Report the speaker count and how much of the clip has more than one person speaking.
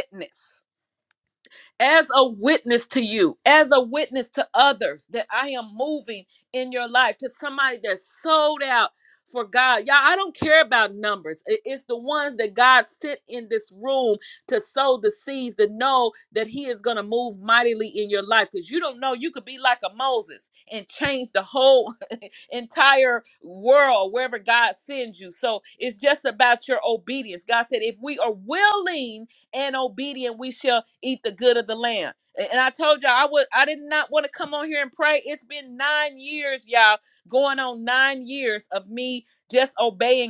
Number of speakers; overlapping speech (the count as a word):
one, no overlap